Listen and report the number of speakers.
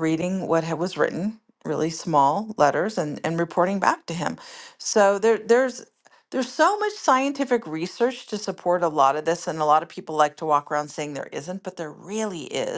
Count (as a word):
one